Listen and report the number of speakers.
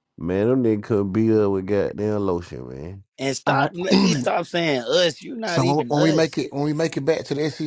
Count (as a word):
three